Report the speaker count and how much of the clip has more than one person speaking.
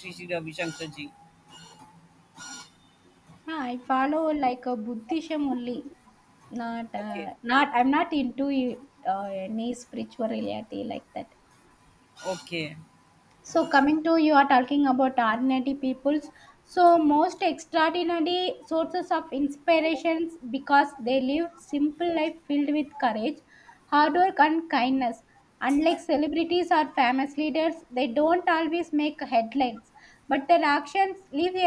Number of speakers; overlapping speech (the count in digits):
2, about 1%